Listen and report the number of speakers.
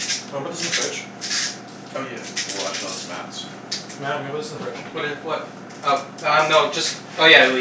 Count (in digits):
3